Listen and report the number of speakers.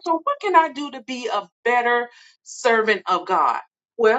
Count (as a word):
one